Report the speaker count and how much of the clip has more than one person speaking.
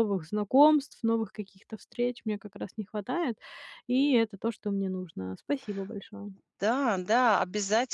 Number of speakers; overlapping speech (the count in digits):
2, no overlap